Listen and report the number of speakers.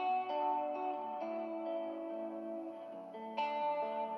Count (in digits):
0